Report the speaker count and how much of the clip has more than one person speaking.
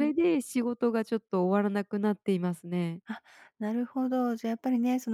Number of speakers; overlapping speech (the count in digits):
2, about 2%